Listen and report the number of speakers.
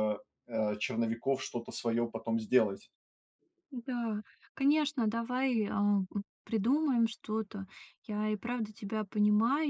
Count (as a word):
two